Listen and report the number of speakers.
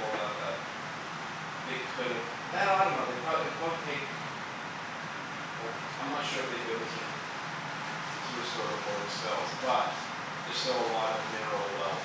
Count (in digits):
1